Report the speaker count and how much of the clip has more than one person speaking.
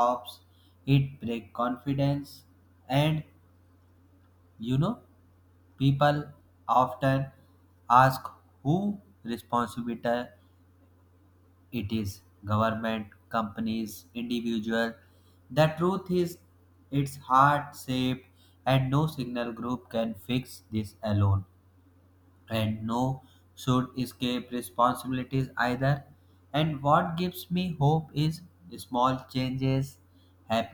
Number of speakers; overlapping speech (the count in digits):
1, no overlap